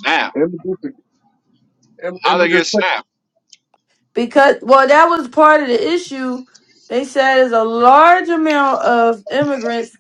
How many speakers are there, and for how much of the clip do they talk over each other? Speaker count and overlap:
3, about 5%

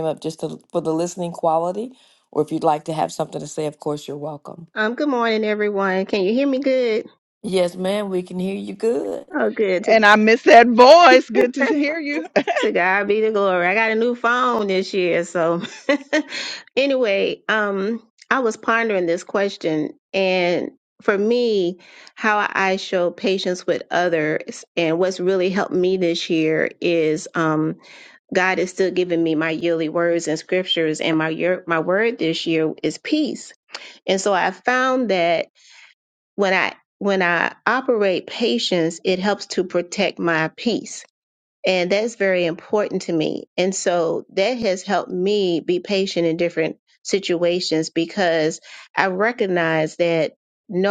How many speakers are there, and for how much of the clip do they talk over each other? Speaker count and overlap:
3, under 1%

